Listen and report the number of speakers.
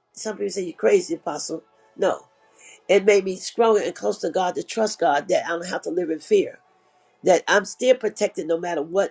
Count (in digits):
1